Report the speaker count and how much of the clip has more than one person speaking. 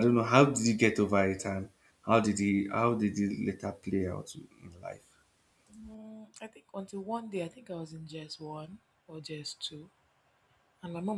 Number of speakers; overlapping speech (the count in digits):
2, no overlap